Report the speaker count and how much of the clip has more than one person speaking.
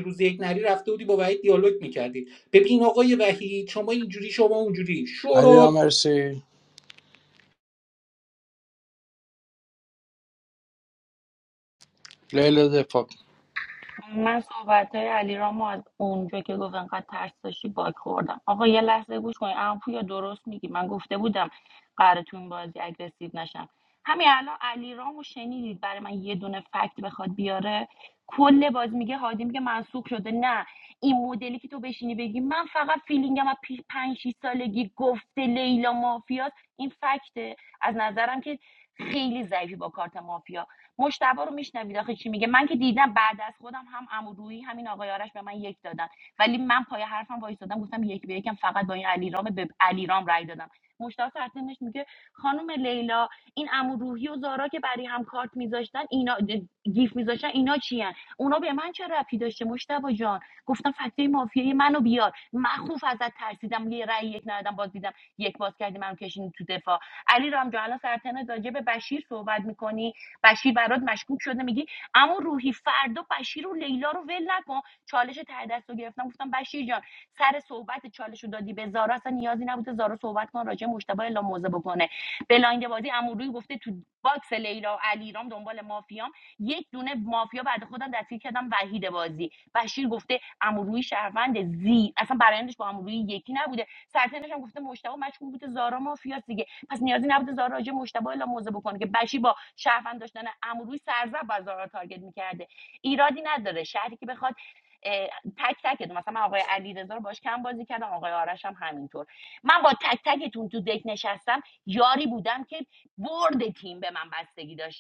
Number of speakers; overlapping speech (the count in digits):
3, under 1%